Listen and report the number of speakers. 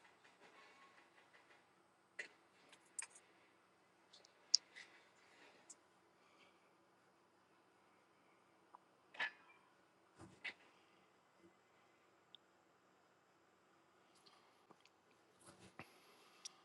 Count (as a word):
zero